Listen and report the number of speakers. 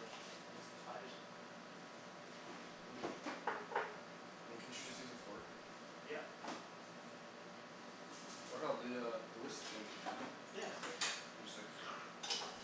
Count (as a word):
two